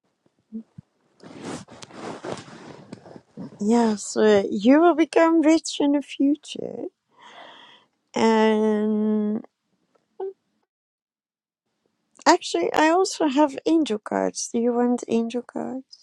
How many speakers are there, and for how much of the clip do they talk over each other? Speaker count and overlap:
1, no overlap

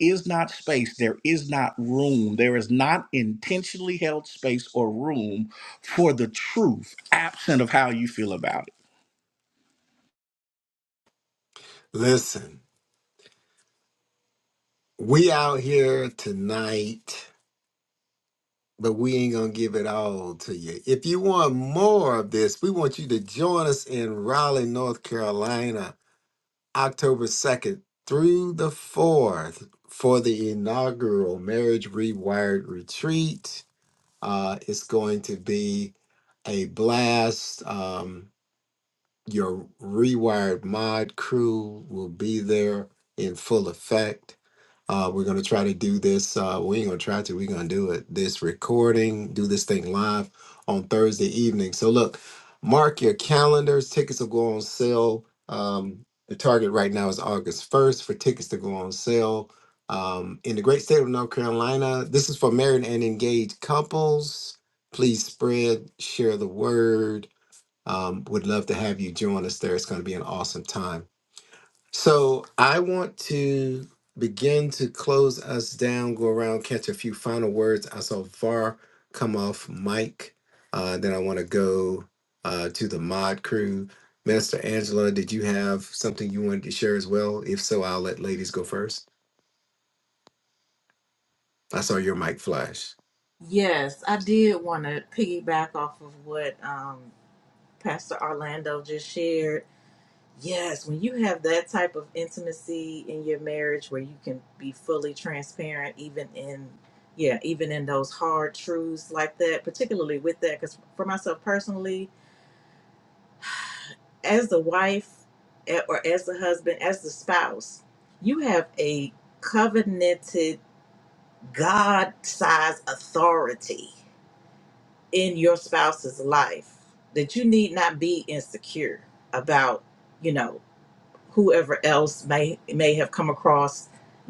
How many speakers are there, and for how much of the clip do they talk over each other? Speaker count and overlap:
3, no overlap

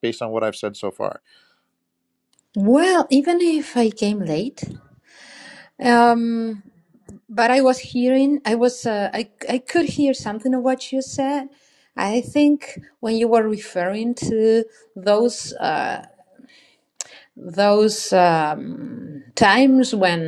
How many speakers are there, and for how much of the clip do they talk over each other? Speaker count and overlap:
2, no overlap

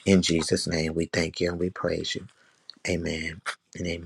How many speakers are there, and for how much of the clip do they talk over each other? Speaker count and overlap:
1, no overlap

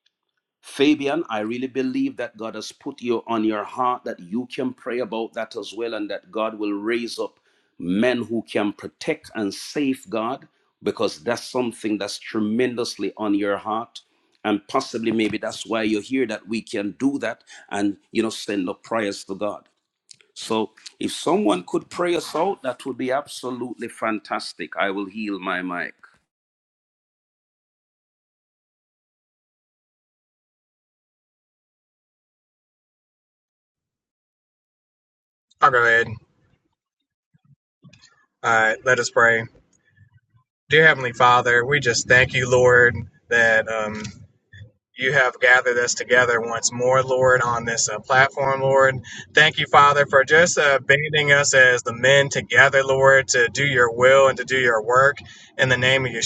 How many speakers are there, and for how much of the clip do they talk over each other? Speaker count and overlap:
2, no overlap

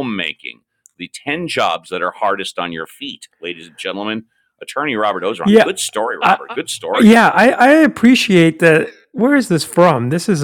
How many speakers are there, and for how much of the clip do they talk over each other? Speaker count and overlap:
2, about 7%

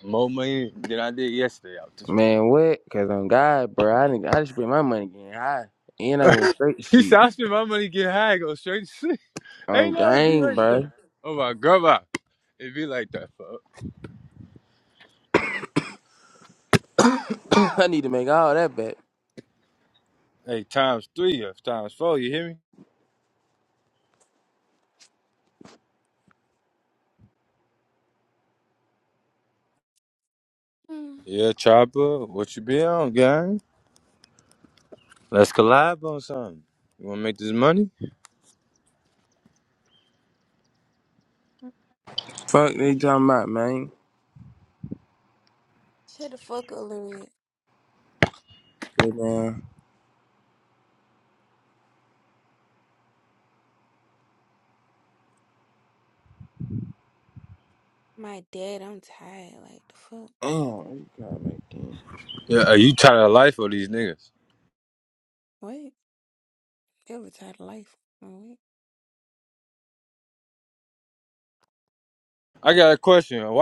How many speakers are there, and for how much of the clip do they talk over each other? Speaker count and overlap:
3, about 2%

